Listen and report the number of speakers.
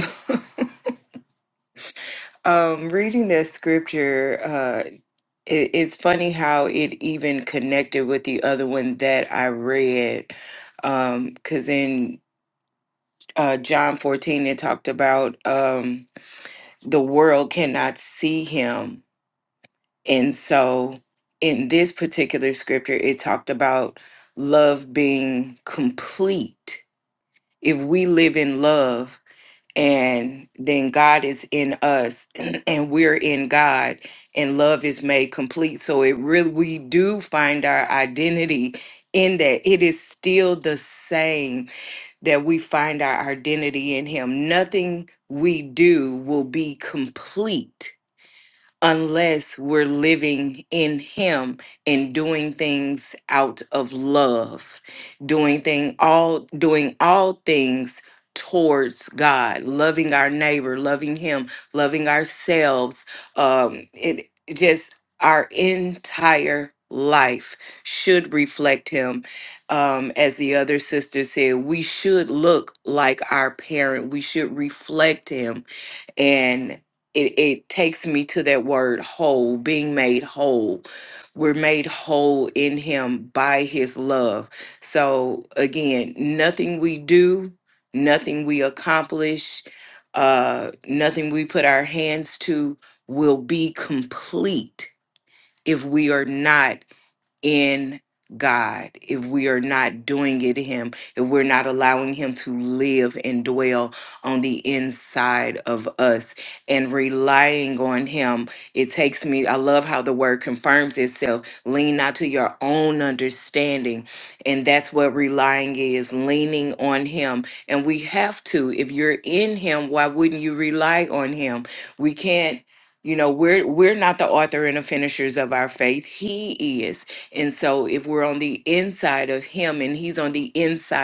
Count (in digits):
1